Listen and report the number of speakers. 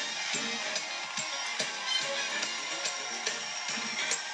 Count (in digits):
0